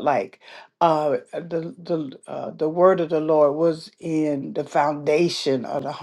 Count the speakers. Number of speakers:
1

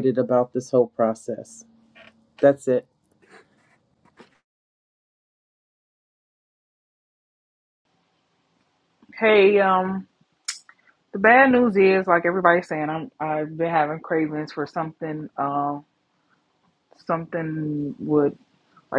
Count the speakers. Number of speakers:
2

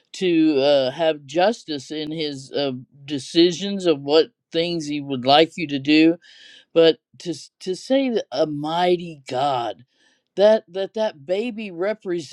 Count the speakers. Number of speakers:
1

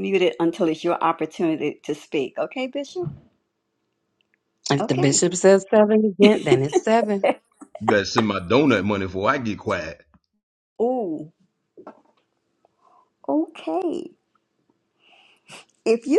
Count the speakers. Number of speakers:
3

